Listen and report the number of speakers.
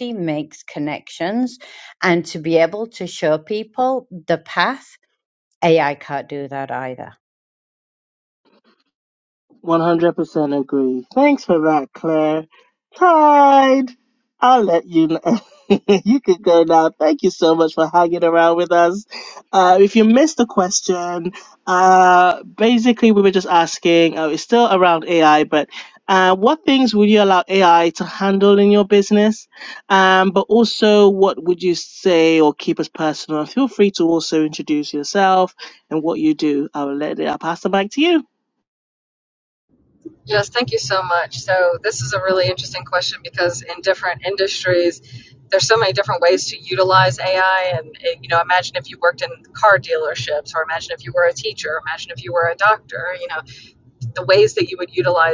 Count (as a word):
three